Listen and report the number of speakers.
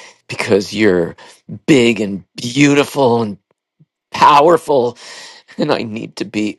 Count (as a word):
one